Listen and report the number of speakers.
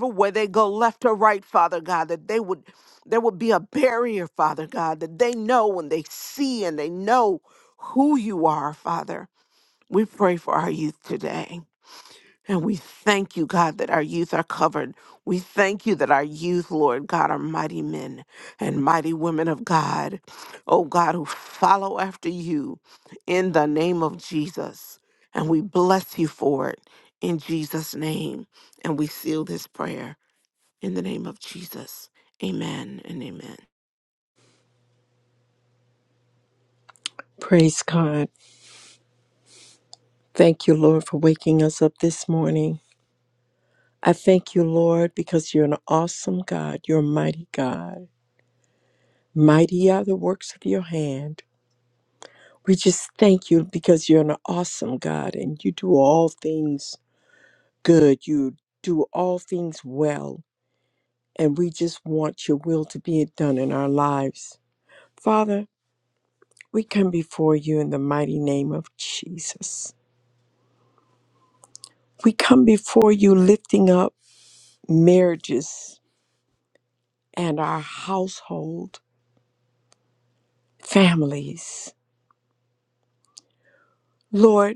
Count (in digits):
2